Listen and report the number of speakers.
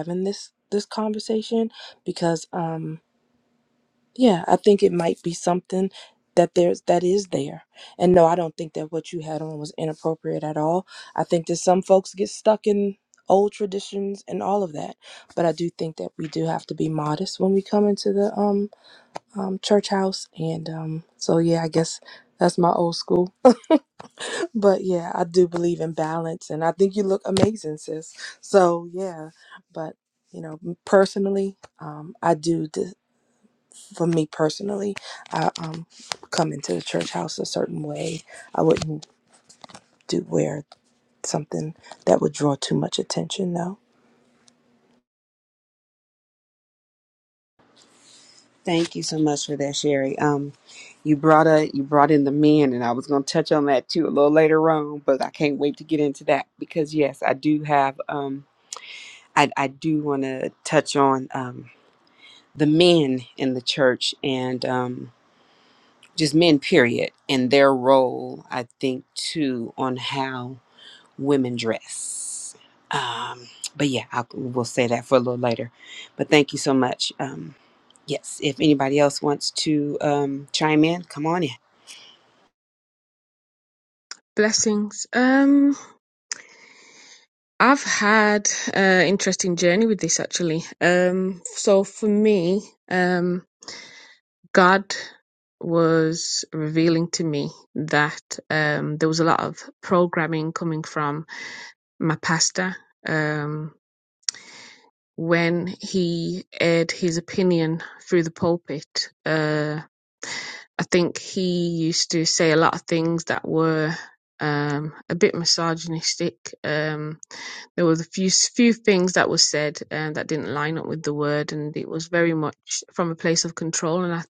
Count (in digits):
3